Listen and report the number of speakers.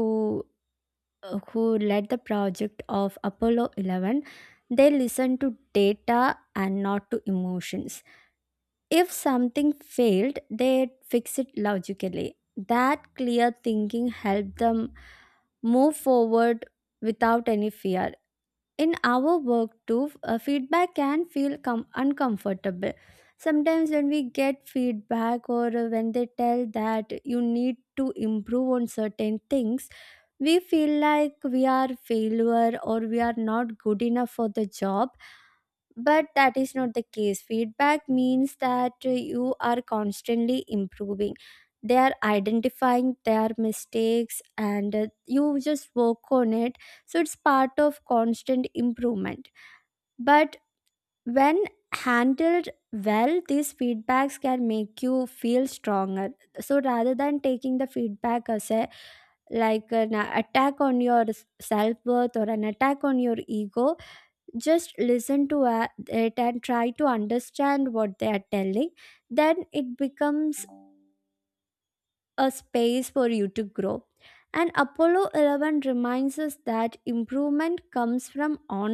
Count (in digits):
1